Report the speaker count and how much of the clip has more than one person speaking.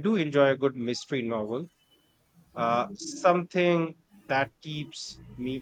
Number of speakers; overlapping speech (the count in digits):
1, no overlap